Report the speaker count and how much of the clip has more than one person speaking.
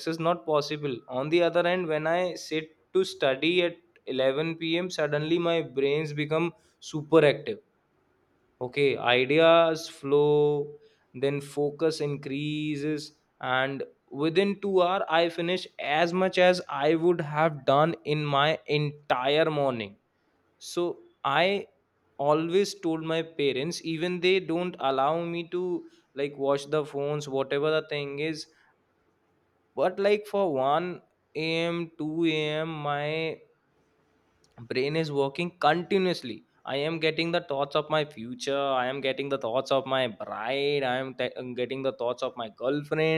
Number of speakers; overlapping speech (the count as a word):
one, no overlap